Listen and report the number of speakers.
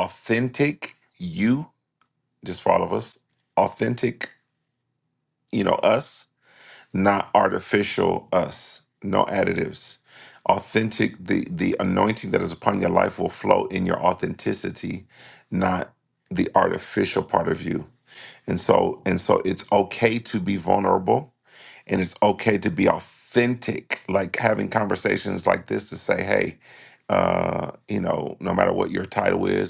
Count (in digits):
1